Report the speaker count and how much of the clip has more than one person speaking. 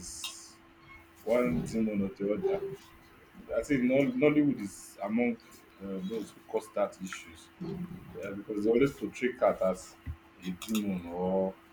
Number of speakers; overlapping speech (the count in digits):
1, no overlap